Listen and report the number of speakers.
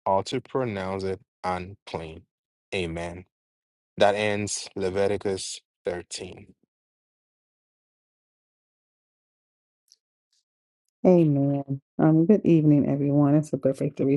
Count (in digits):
2